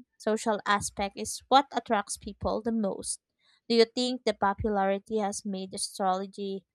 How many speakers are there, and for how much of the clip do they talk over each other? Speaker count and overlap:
1, no overlap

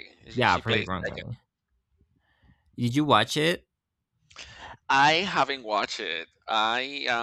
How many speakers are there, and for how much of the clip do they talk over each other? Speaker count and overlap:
2, about 12%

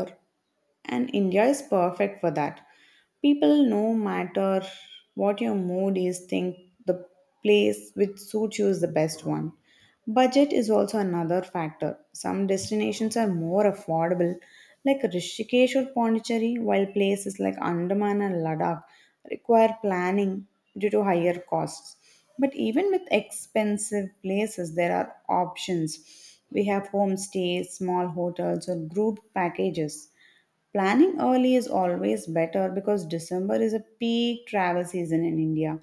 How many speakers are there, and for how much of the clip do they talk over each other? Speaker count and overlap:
1, no overlap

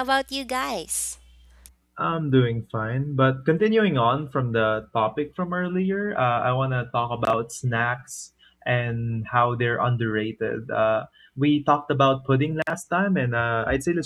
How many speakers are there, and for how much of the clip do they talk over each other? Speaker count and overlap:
2, no overlap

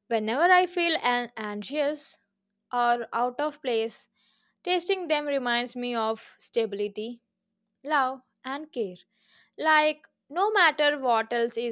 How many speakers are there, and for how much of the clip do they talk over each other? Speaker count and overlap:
1, no overlap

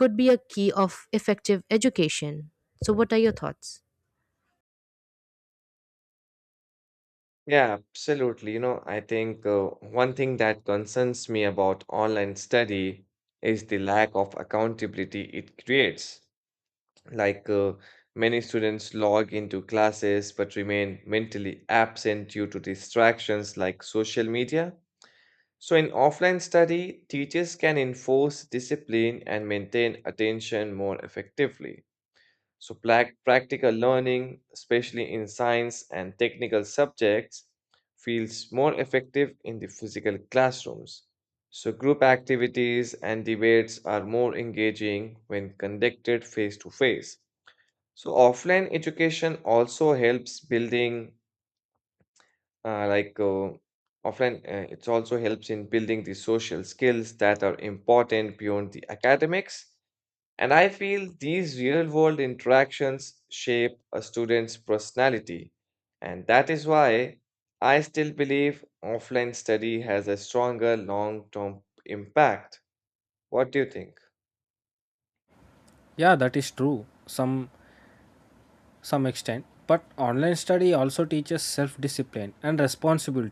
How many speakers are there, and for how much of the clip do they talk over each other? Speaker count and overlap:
3, no overlap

